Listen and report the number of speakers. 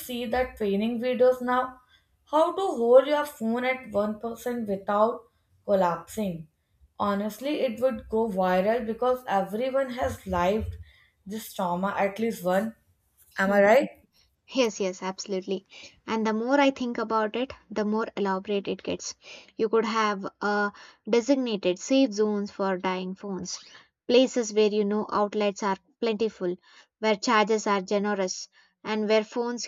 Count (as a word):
two